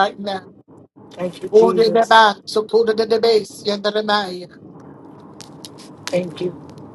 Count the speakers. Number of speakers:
2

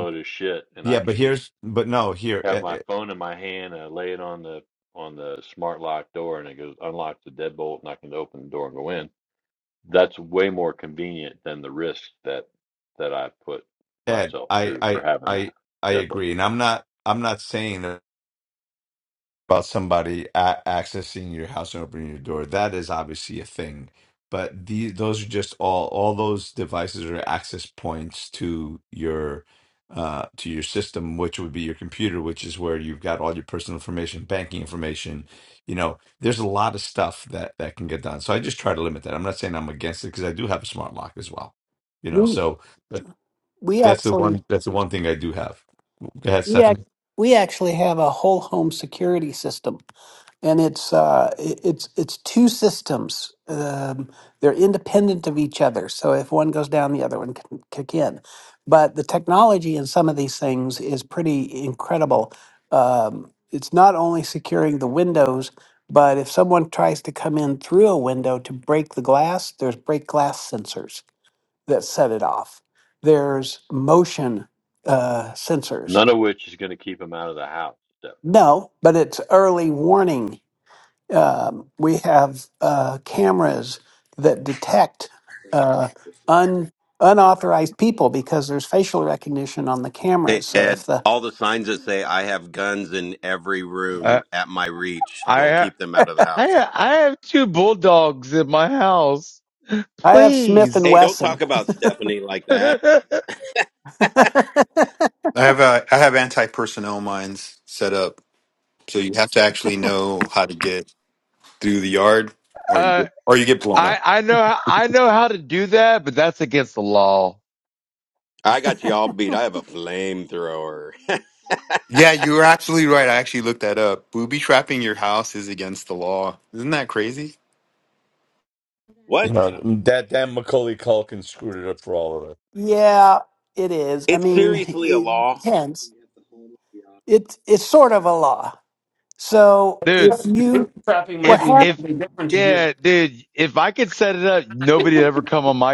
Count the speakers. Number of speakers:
7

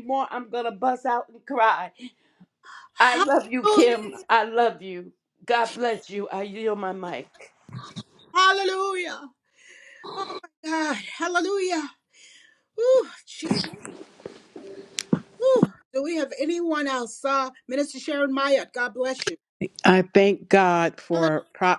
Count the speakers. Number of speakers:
3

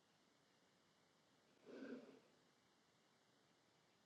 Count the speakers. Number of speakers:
0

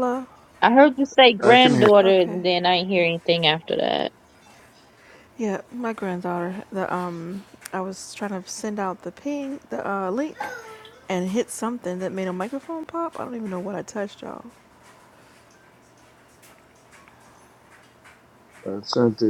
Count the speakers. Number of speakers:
3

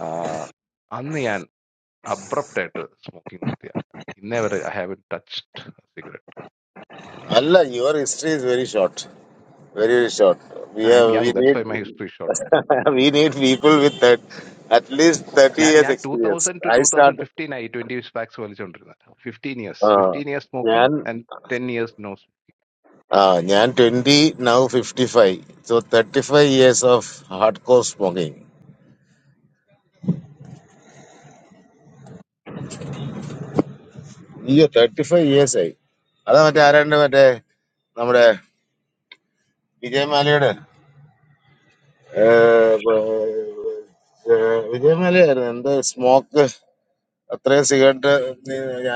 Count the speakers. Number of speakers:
2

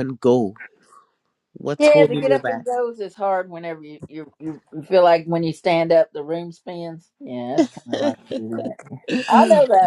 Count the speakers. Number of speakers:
2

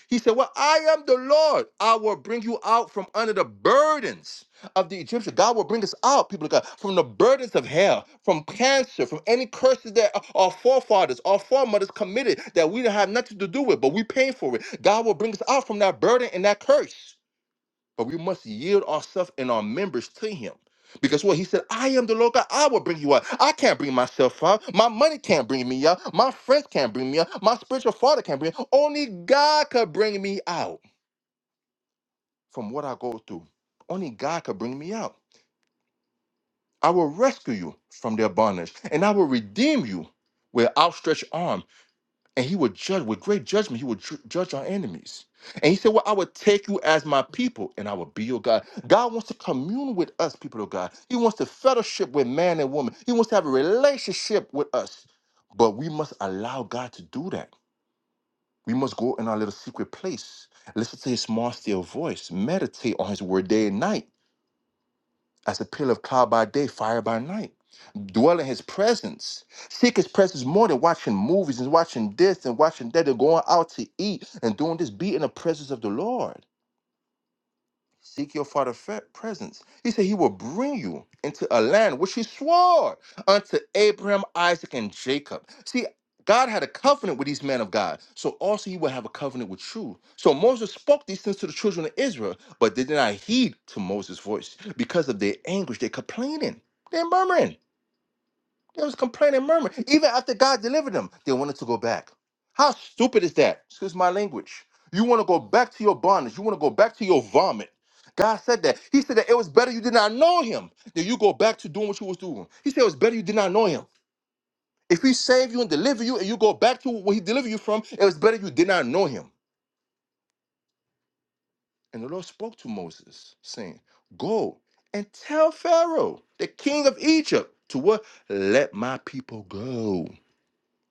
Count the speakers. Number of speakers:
1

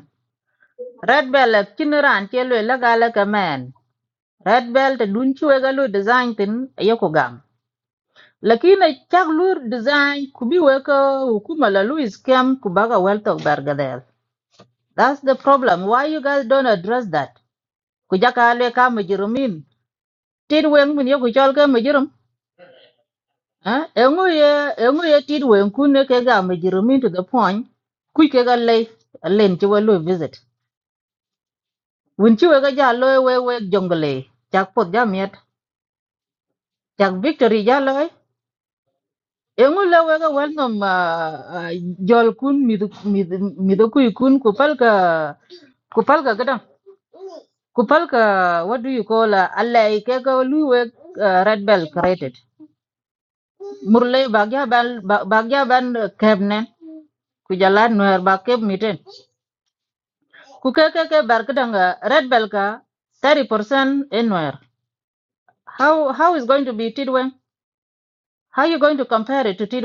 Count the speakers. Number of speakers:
1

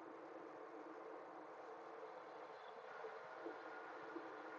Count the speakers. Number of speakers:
0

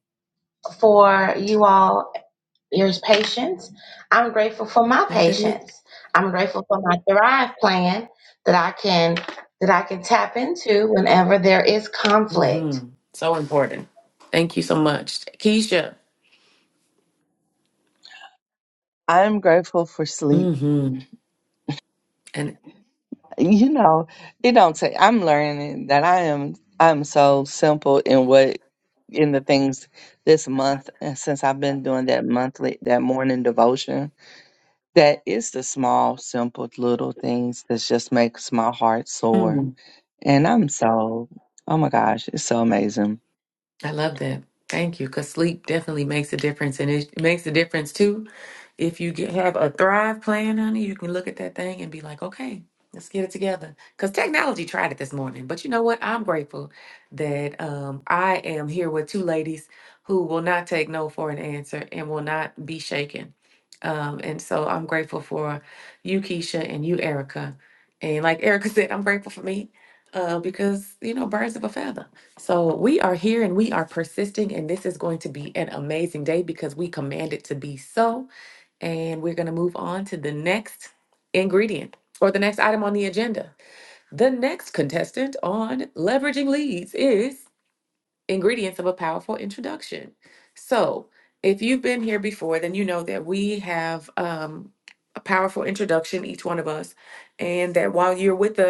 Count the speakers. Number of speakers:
3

